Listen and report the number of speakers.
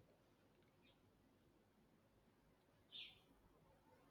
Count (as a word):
zero